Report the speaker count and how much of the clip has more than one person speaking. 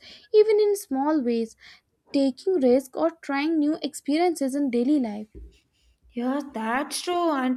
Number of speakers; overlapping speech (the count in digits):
2, no overlap